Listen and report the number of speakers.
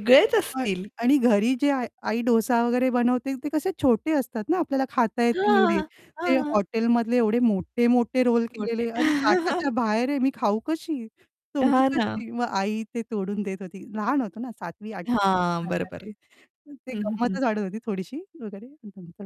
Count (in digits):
2